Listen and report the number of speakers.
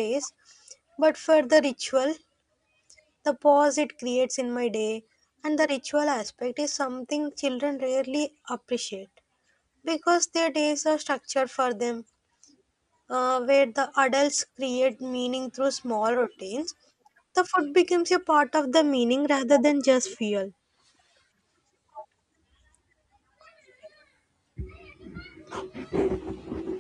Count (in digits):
1